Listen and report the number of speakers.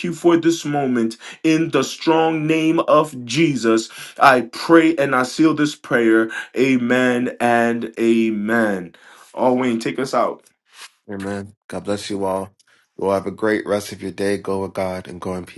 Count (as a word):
two